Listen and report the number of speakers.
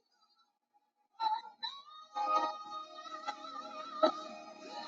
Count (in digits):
0